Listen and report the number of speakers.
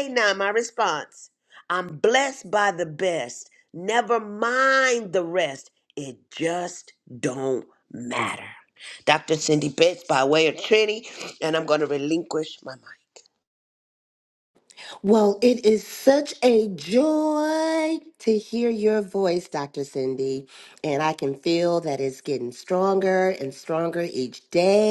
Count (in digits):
2